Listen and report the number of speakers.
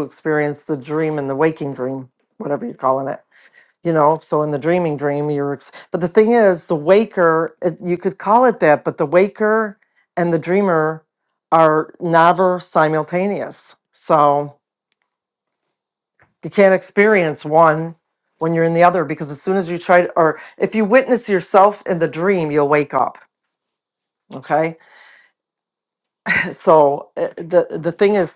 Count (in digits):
1